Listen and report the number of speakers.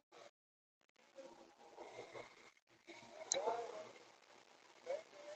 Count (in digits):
0